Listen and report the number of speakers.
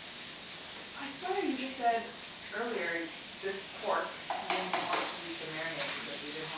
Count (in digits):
1